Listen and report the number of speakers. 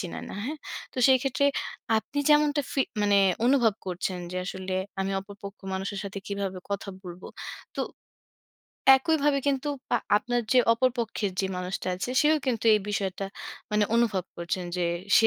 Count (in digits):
1